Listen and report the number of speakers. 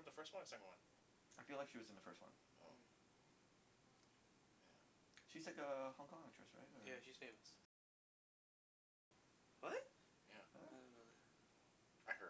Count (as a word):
three